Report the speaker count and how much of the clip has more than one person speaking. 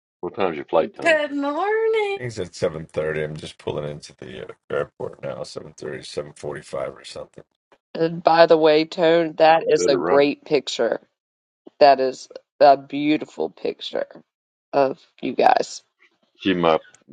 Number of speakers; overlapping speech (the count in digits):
4, about 4%